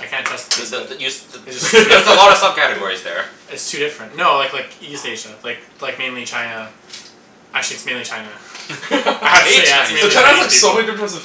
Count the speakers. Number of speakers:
3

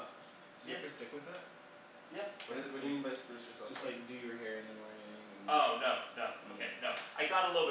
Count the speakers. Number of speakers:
3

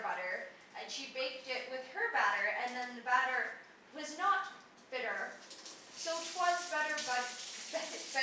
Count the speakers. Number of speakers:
1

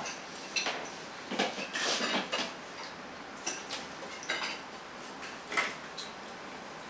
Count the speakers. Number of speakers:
0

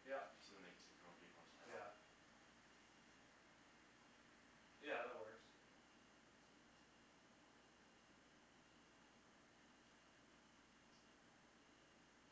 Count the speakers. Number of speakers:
2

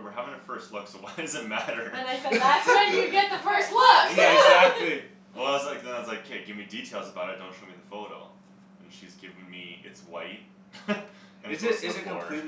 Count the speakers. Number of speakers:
3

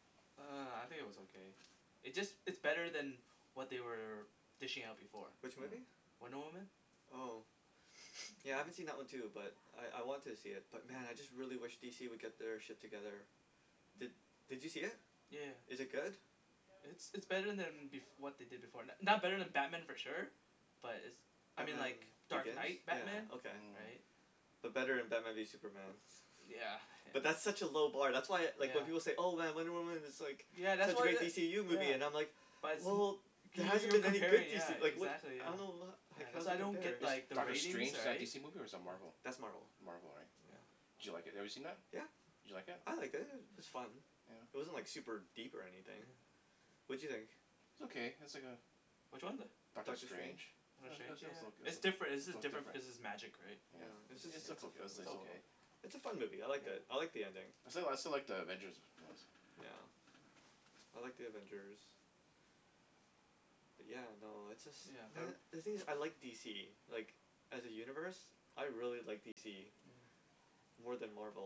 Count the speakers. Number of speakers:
3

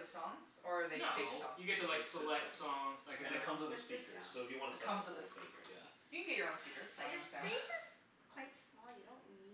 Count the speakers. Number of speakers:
4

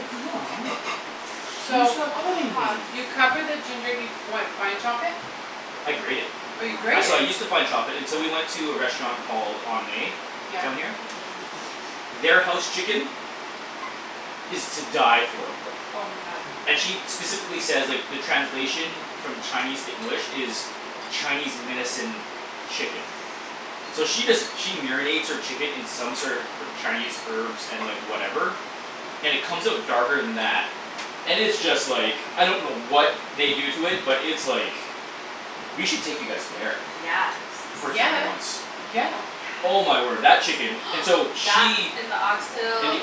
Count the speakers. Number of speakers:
3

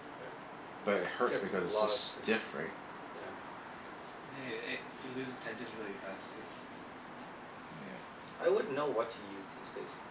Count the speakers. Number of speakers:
3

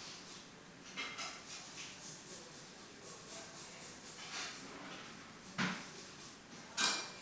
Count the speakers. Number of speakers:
0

